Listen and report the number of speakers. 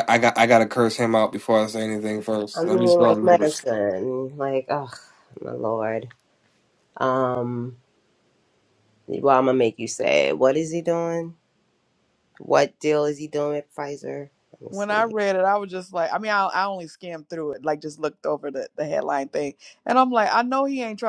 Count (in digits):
3